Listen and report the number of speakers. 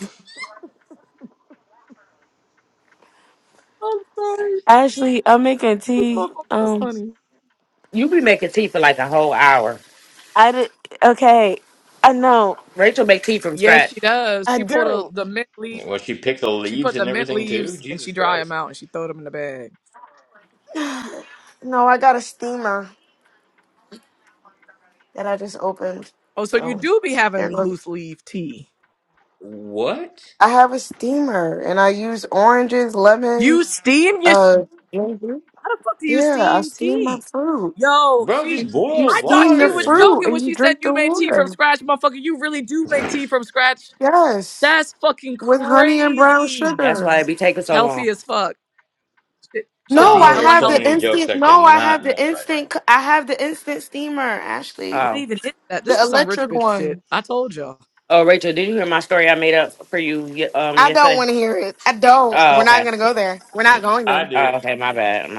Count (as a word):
four